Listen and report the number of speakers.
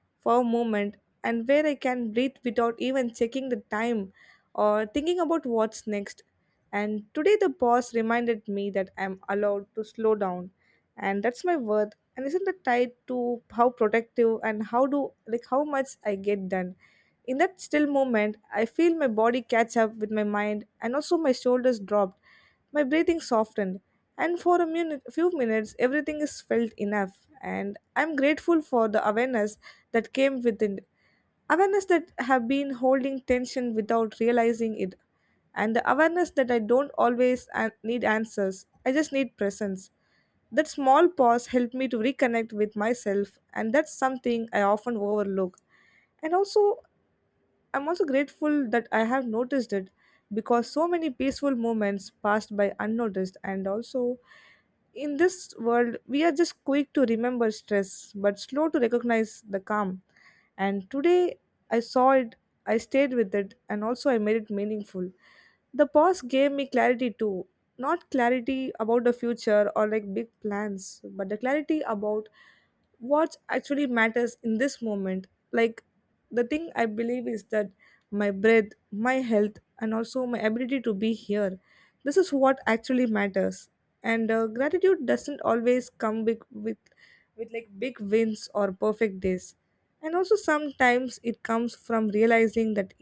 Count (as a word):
one